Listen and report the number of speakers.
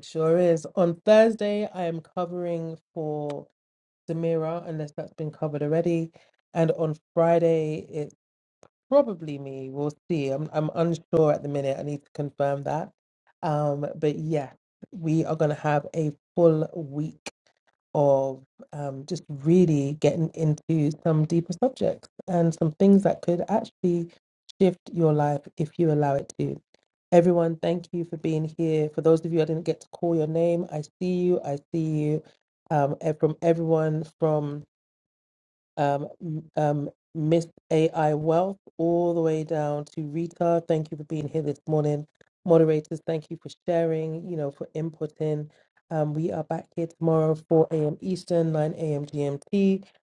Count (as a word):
one